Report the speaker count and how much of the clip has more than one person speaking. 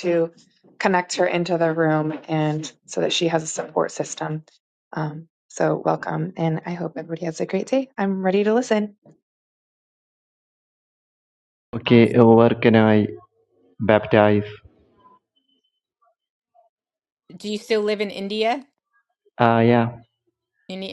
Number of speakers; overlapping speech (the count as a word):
three, about 1%